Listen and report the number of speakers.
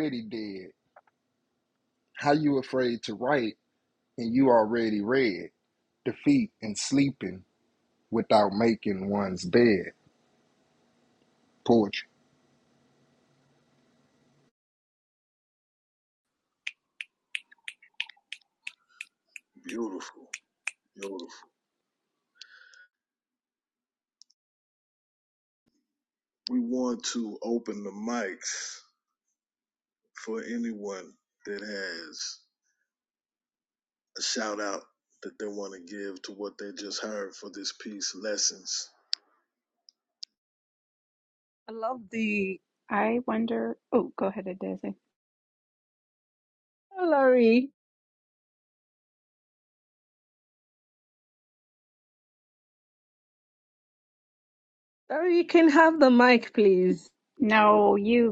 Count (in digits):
4